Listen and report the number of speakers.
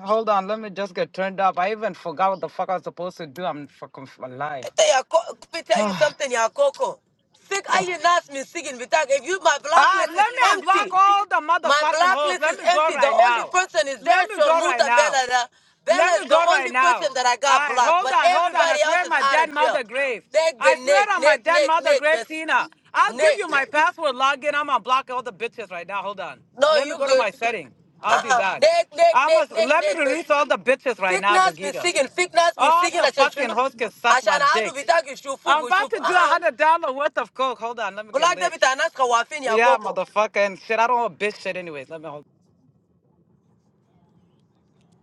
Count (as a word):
two